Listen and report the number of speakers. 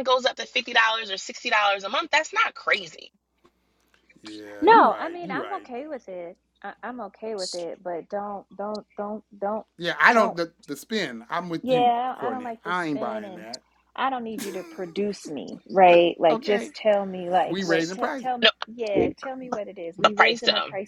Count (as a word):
three